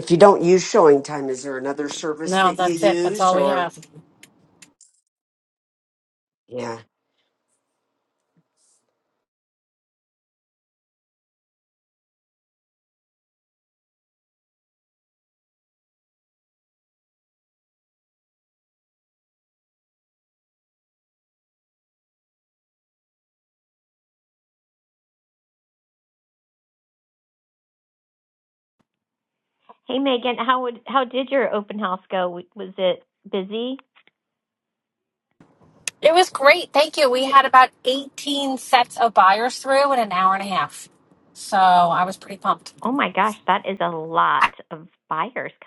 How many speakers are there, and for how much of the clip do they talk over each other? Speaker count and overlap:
3, about 3%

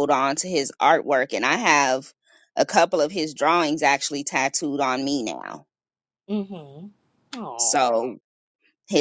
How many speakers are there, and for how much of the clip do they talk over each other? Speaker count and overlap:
2, about 3%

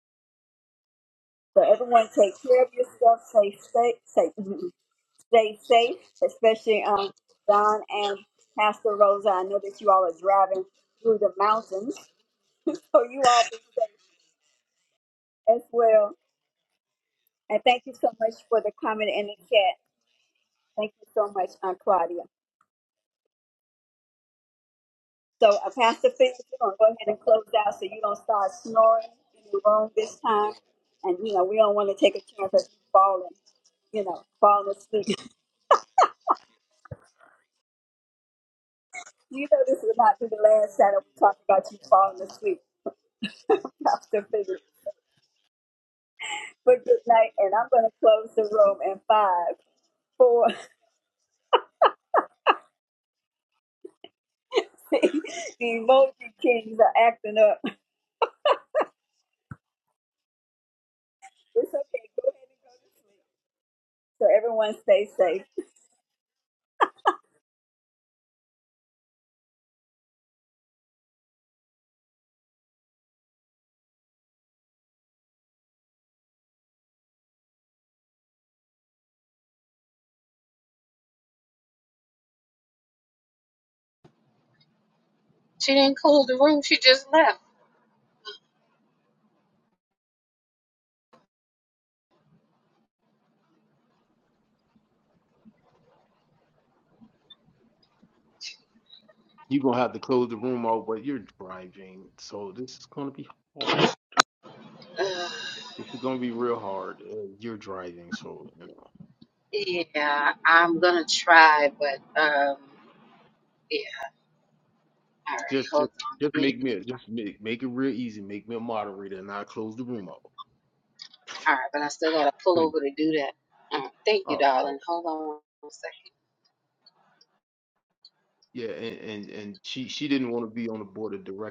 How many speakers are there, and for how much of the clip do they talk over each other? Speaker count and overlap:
3, about 1%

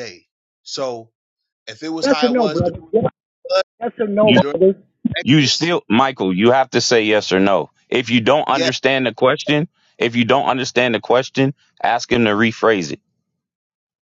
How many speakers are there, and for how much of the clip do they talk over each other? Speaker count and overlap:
3, about 11%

